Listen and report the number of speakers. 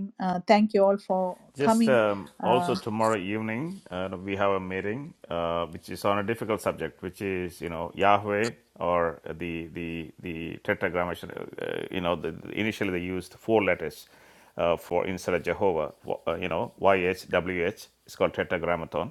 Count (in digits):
2